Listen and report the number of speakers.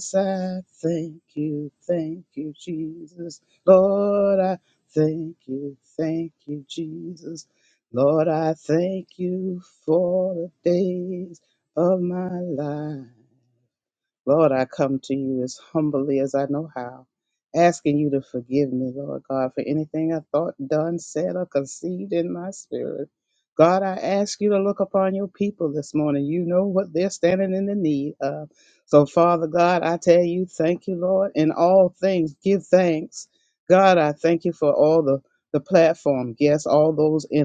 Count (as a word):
one